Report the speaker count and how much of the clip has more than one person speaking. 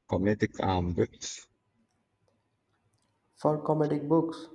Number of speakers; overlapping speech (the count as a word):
two, no overlap